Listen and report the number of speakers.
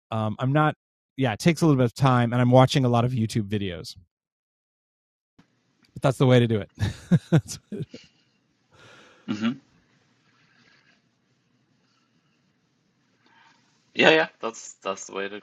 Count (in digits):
2